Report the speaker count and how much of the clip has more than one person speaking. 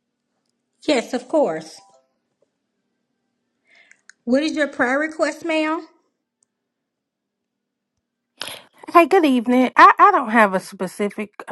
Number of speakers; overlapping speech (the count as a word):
two, no overlap